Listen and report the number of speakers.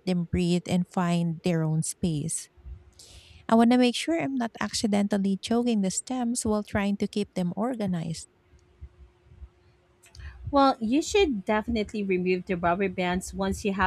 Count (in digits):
2